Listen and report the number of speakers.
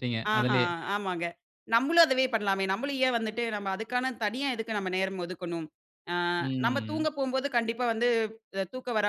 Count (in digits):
2